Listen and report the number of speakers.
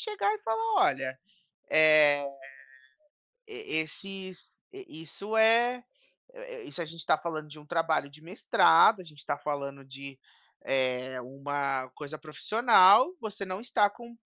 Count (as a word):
one